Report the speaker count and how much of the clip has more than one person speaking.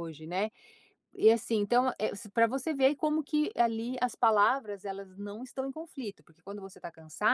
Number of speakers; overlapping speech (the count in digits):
1, no overlap